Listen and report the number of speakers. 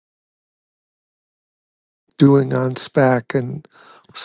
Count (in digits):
1